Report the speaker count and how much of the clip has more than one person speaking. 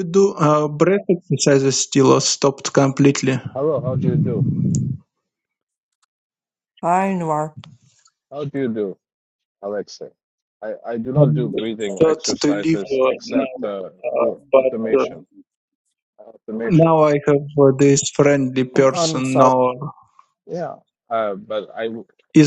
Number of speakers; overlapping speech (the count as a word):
three, about 18%